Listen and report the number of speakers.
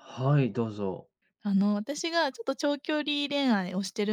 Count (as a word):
two